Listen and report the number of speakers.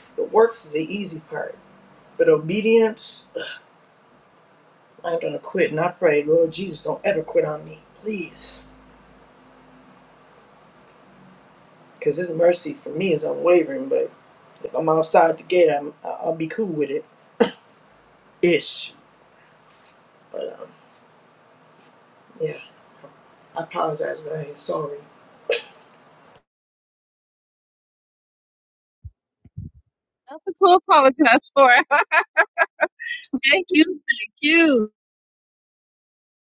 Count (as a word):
two